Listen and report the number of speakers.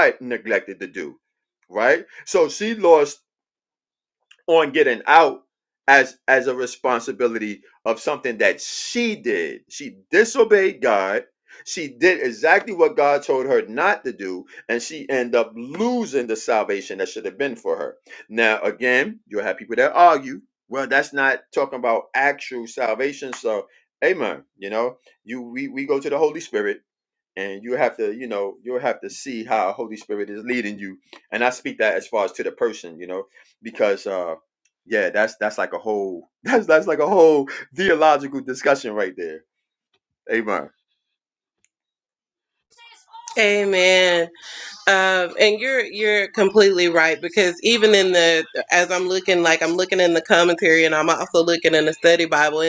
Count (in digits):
2